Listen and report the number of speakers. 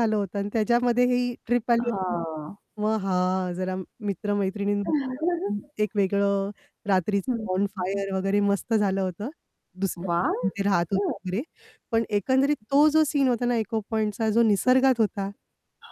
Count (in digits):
2